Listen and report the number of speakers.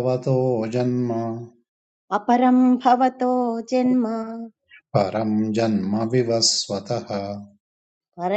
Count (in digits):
2